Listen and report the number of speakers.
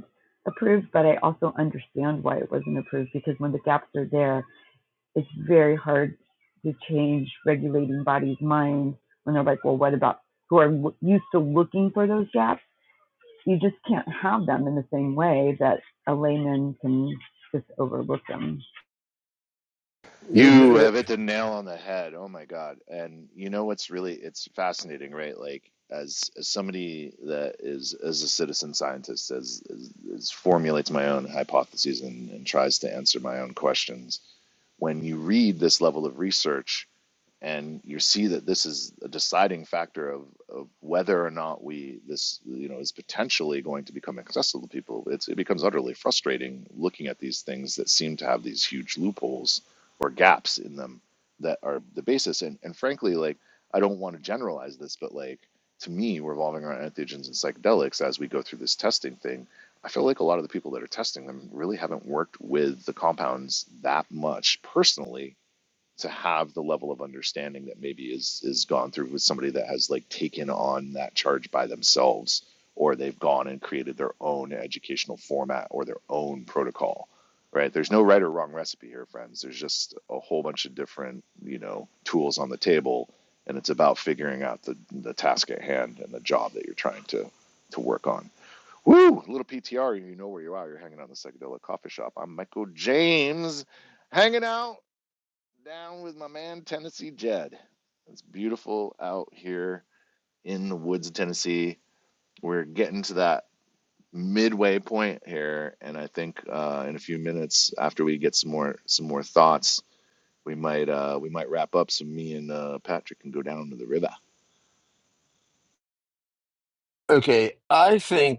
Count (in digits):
3